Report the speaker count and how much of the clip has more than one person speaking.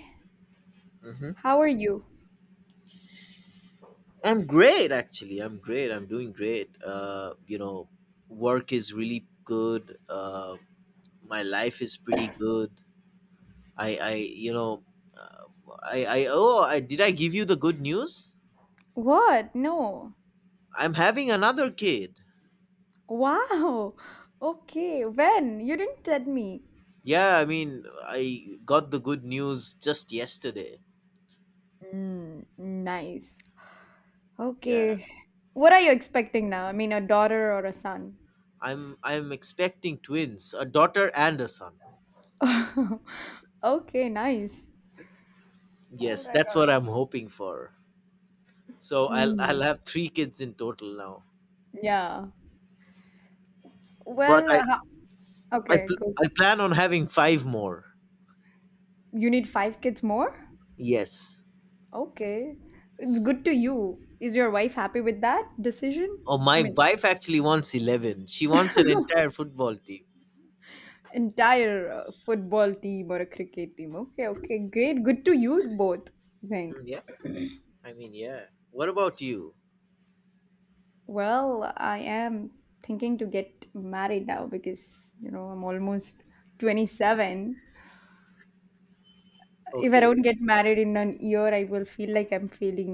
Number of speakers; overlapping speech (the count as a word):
two, about 3%